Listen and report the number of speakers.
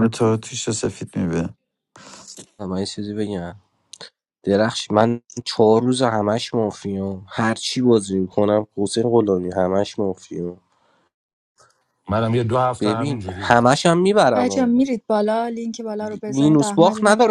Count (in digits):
4